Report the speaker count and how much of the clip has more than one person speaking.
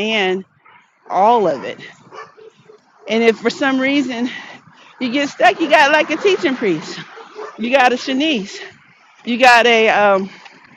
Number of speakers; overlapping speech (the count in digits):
1, no overlap